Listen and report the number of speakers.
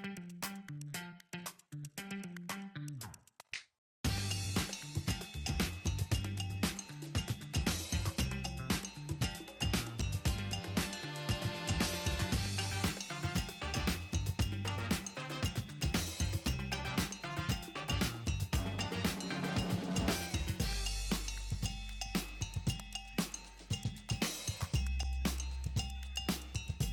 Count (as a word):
zero